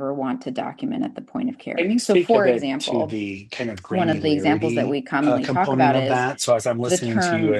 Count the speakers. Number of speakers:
2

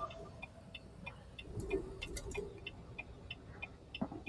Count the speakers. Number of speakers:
0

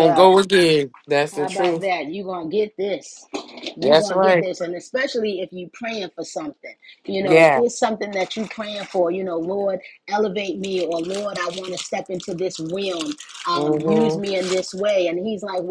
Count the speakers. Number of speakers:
2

